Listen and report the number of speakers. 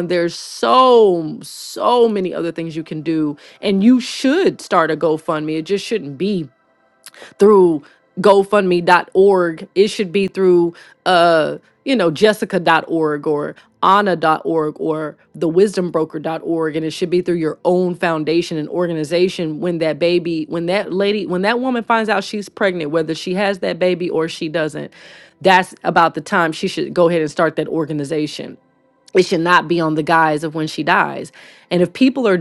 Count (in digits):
1